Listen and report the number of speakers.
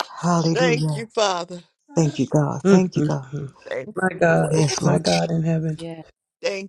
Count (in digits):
3